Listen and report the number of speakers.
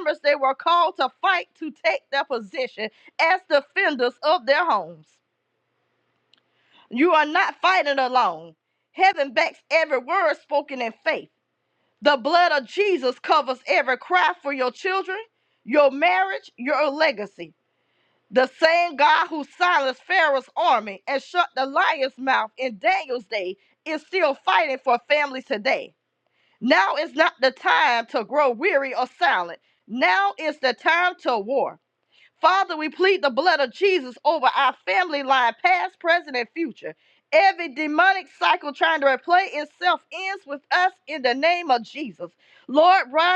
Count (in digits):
1